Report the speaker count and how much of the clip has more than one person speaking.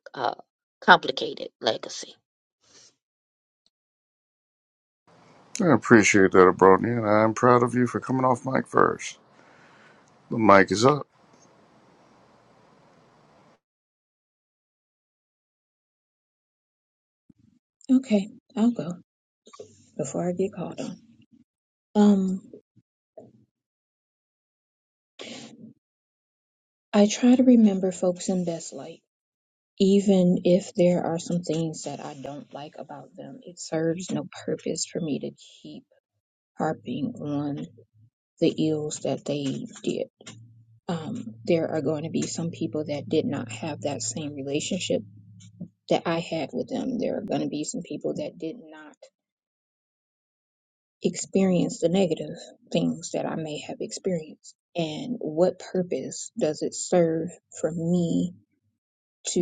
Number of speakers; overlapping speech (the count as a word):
three, no overlap